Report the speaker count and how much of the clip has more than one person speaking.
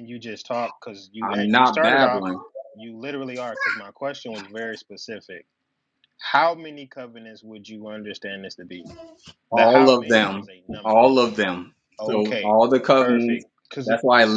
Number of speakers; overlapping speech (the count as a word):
two, about 23%